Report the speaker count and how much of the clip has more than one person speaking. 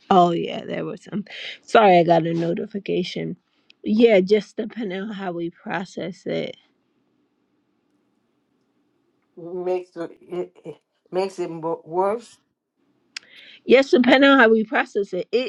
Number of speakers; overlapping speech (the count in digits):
2, no overlap